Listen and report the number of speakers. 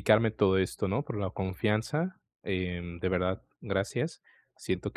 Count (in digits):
1